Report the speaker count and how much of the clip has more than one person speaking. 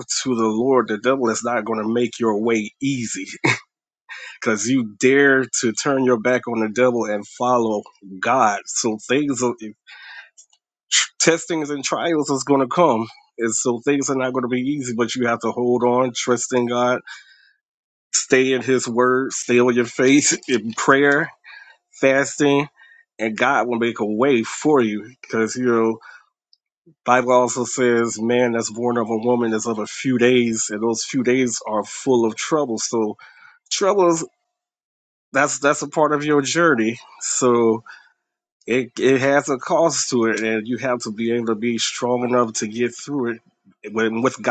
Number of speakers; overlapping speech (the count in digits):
1, no overlap